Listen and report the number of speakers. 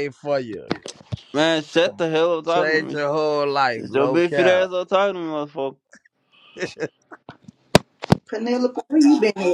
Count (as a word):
three